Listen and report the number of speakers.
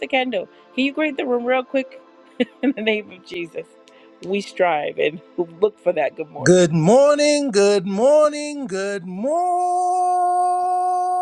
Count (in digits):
2